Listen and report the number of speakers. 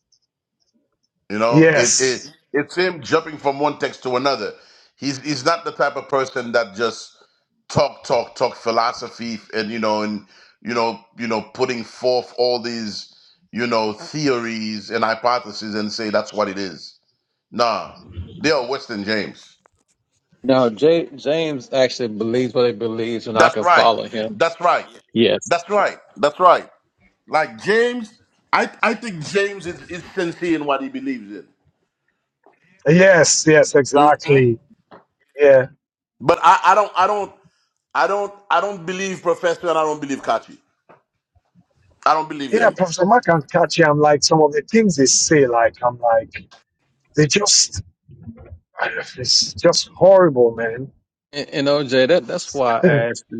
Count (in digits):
3